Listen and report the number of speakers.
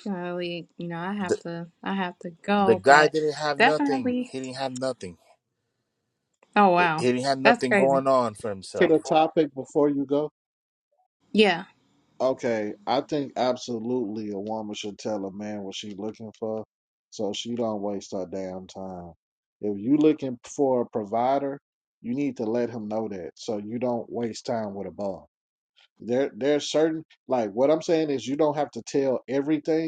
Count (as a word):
three